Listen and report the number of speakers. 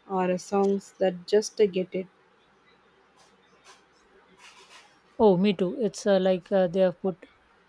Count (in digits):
2